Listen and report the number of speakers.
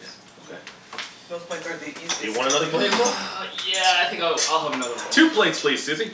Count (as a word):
three